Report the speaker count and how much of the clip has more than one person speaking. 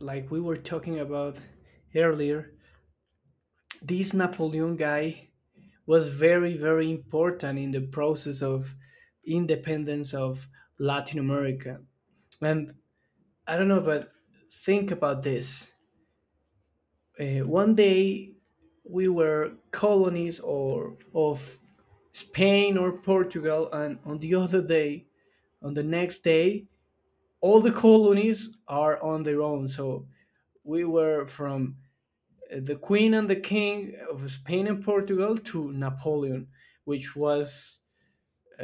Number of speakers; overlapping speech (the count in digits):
1, no overlap